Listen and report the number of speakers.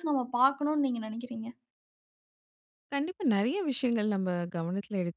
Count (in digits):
2